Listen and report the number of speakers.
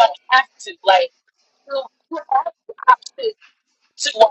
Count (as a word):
one